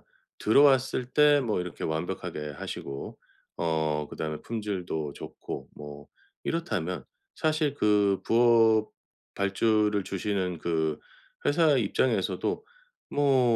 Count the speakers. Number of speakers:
1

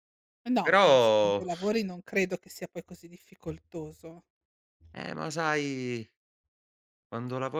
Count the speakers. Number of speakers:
2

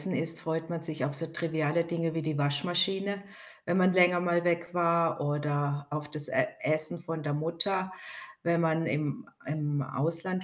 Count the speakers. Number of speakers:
1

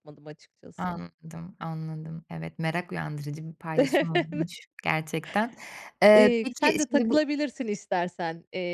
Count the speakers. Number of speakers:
2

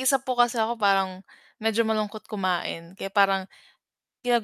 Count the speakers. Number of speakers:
1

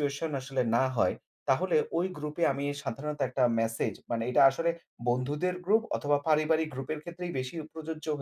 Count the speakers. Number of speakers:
1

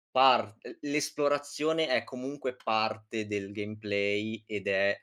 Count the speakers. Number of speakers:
1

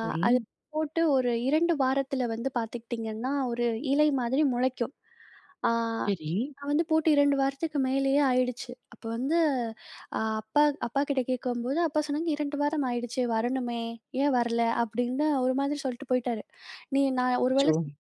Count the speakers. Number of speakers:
2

